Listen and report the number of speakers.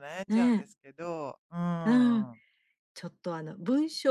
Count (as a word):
two